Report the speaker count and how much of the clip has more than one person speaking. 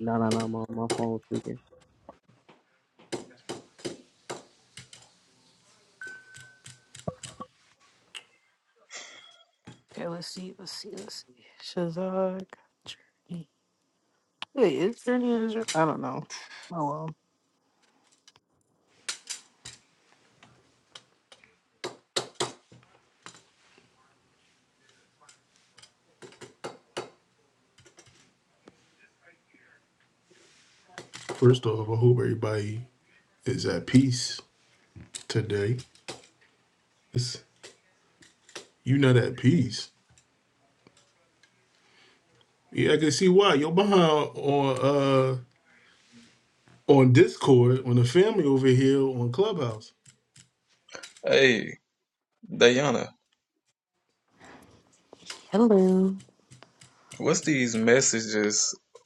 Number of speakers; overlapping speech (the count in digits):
4, no overlap